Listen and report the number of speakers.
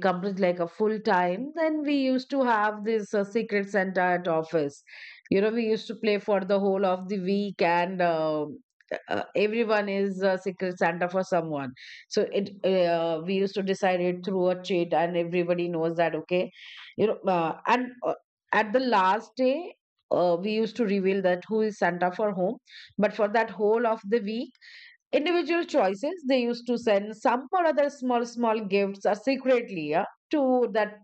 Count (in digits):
1